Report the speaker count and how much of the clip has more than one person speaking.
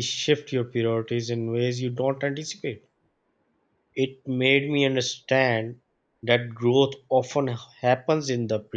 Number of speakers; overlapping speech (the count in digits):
1, no overlap